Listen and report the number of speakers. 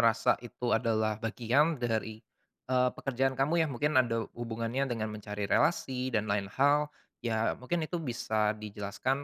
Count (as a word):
one